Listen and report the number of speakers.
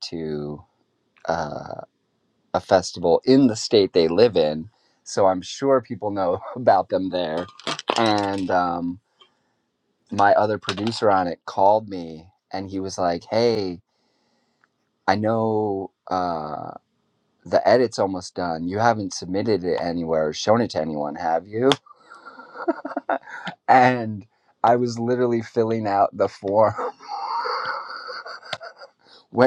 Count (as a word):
one